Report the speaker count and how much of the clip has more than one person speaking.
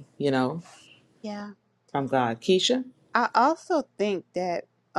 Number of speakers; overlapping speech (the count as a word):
two, no overlap